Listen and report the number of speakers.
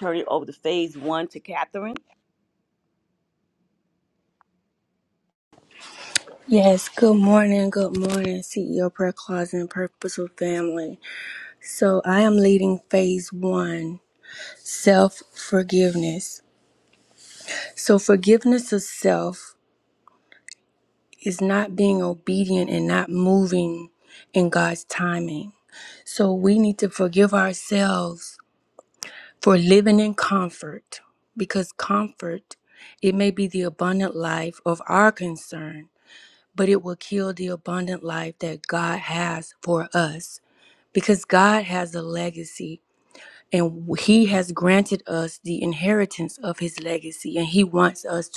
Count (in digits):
2